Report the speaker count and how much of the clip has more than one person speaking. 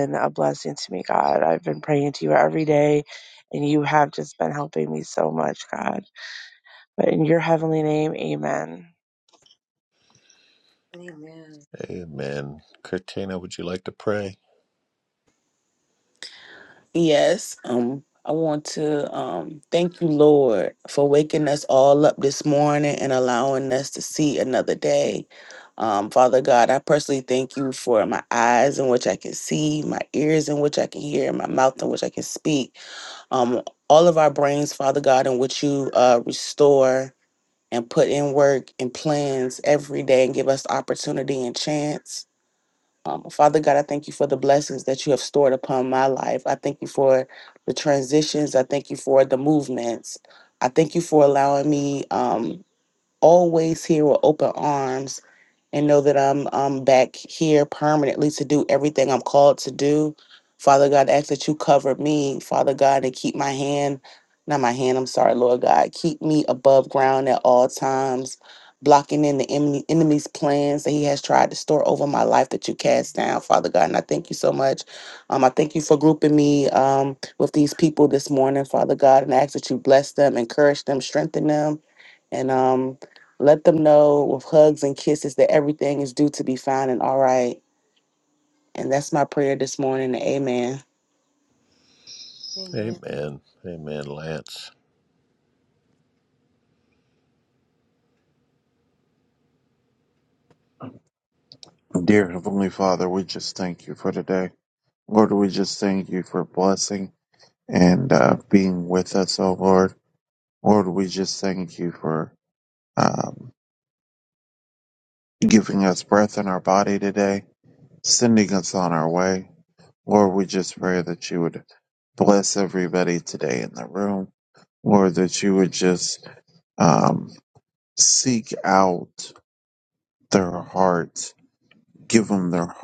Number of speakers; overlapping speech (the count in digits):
5, under 1%